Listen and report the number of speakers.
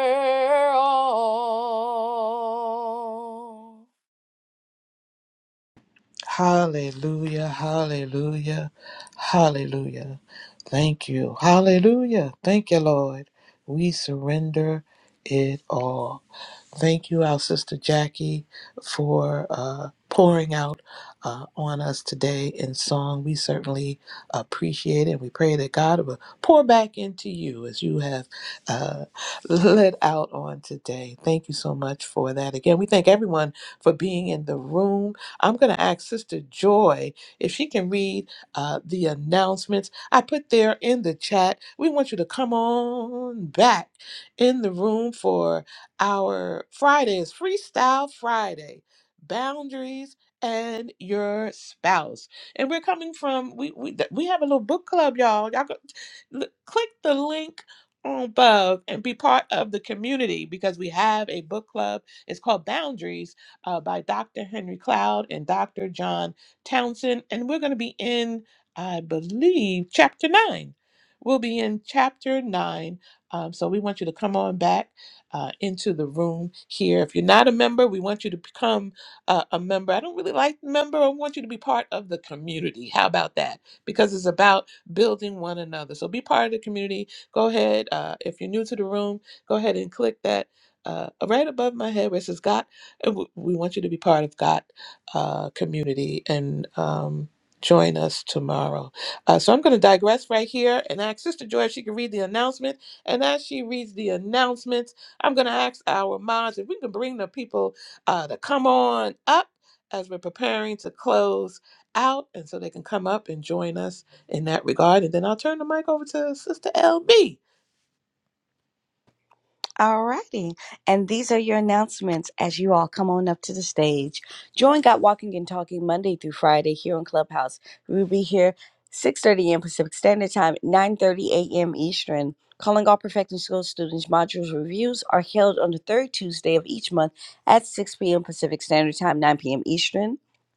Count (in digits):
3